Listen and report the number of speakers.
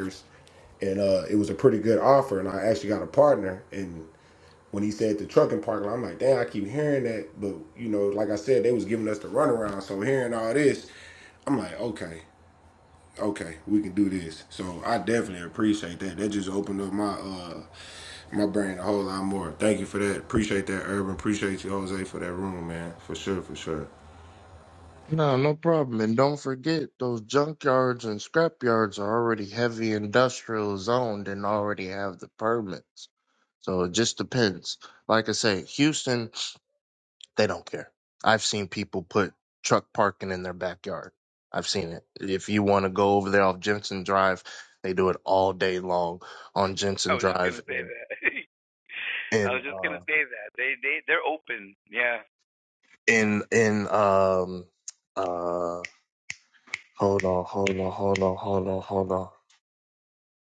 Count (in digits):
3